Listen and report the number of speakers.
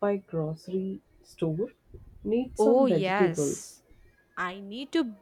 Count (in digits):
2